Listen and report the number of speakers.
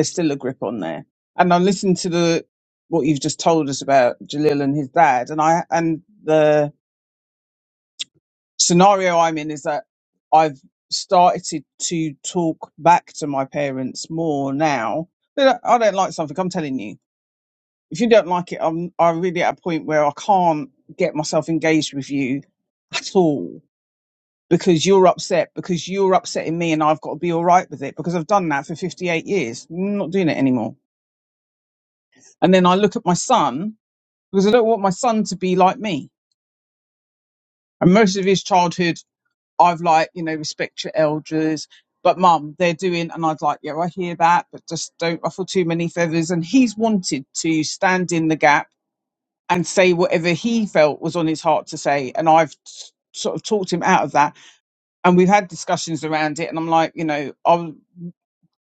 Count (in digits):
1